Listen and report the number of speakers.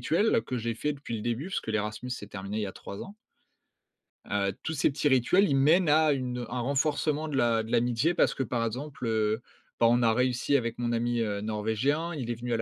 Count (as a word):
one